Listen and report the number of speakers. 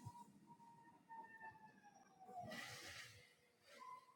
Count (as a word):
zero